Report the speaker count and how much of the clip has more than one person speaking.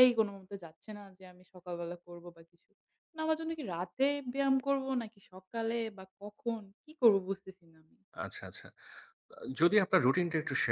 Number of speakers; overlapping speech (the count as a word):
two, no overlap